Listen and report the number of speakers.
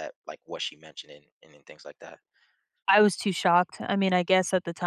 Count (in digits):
2